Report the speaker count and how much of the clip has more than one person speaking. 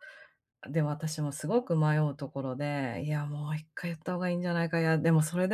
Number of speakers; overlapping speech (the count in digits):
1, no overlap